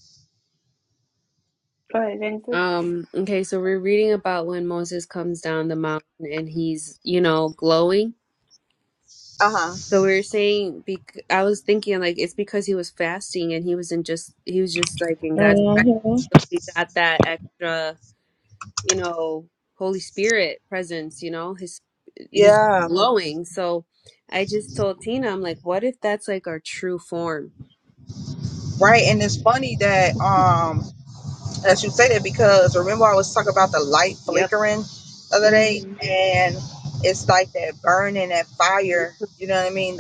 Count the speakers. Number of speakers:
3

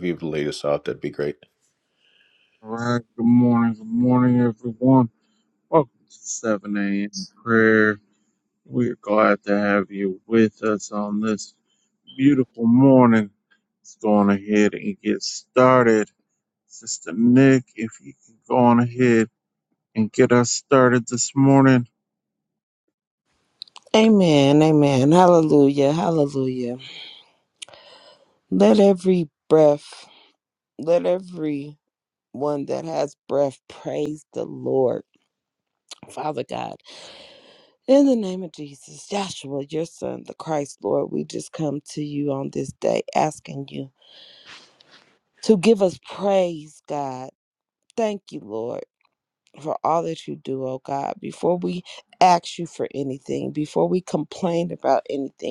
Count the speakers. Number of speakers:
3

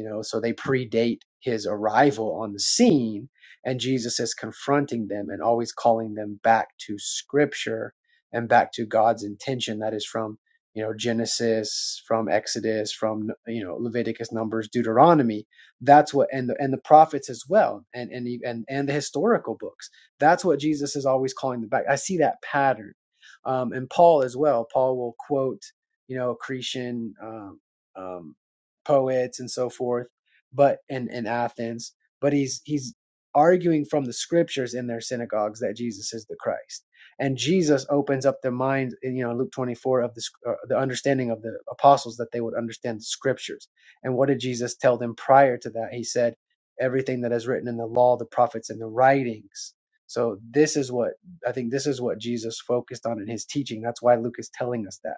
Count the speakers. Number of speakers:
1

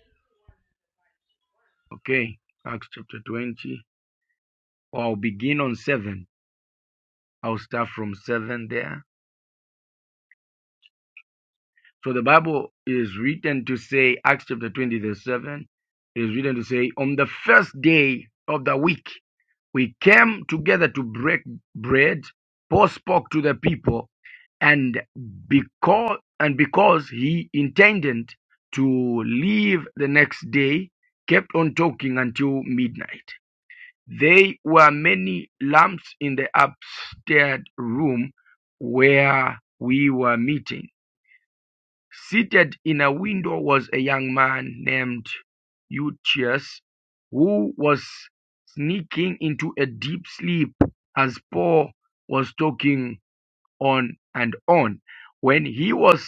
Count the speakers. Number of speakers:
1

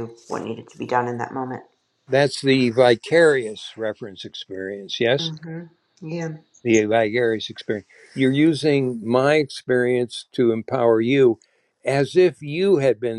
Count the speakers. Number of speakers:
2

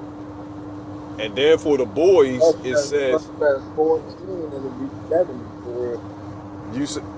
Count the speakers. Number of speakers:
2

